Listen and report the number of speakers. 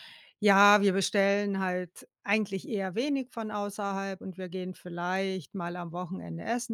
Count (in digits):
1